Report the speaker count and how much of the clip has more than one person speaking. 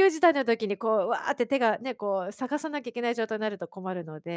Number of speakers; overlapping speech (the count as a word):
one, no overlap